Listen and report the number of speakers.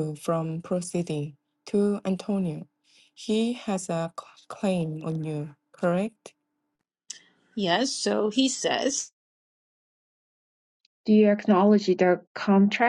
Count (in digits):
3